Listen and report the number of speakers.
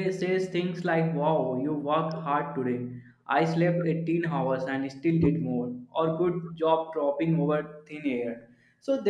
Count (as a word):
one